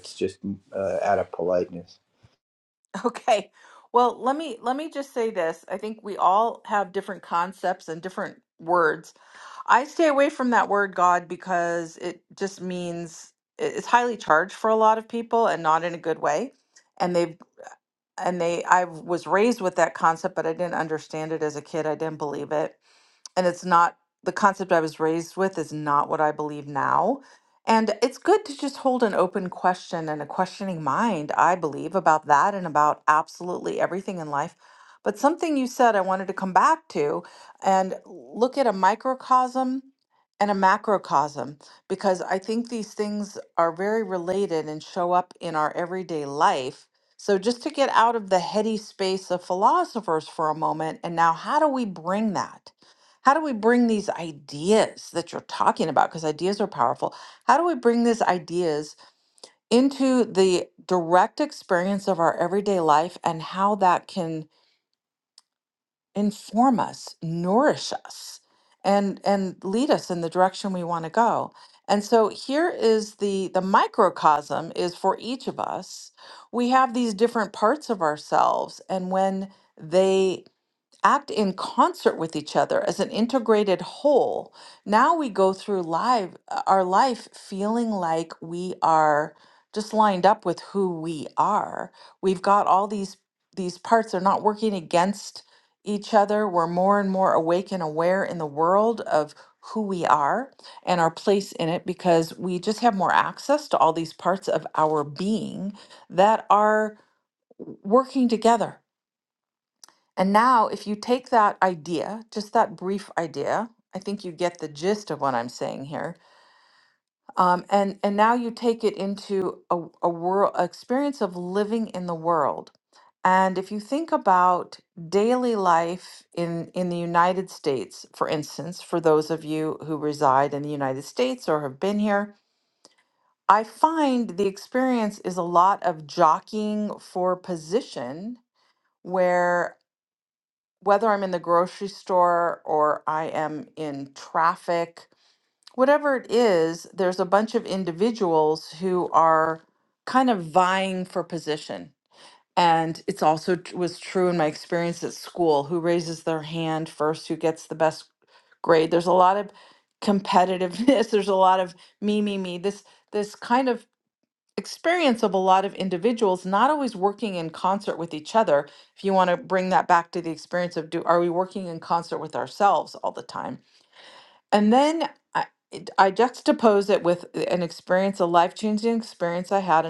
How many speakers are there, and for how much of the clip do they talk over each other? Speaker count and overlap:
2, no overlap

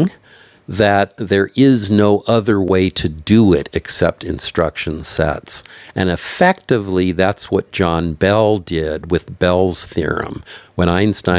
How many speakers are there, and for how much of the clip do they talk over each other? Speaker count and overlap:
1, no overlap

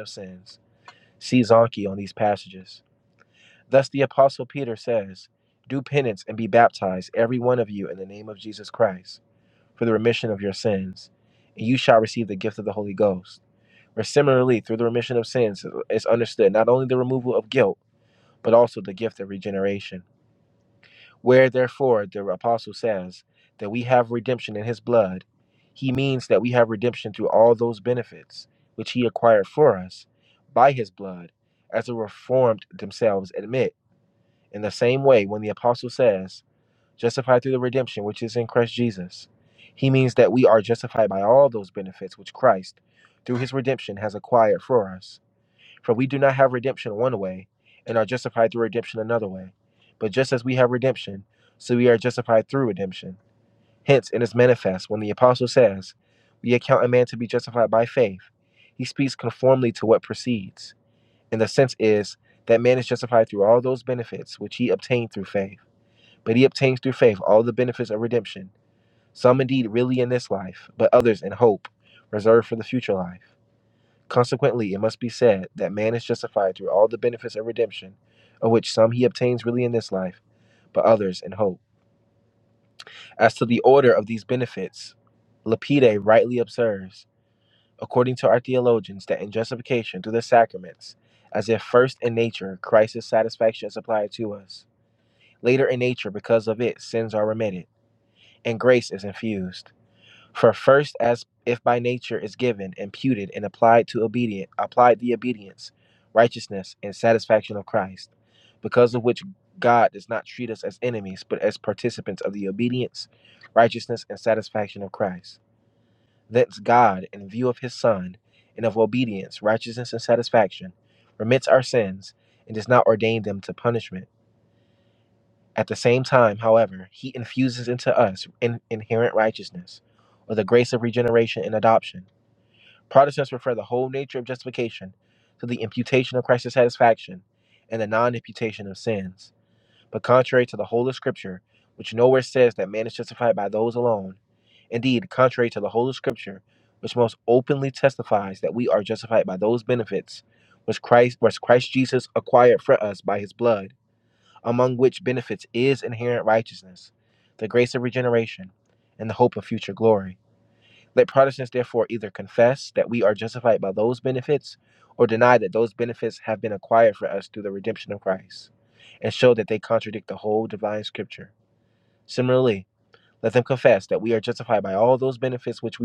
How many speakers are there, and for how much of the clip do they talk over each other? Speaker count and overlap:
1, no overlap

